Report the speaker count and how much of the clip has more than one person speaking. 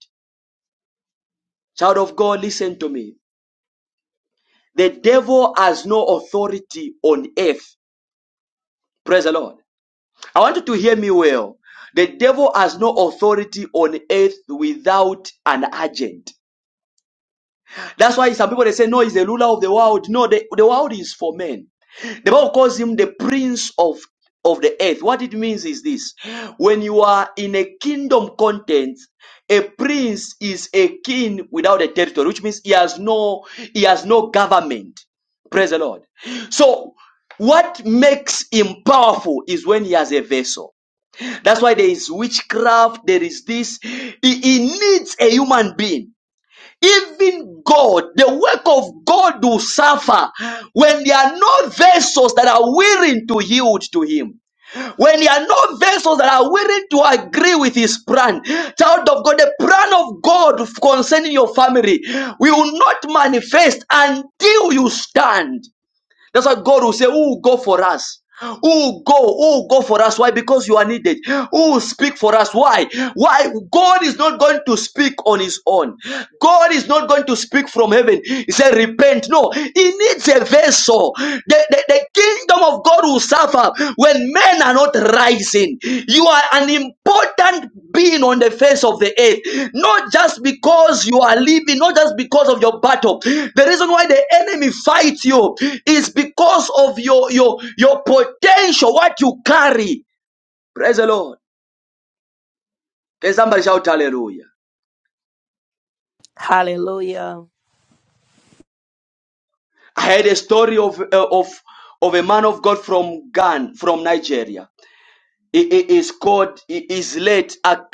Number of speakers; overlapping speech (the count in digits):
2, no overlap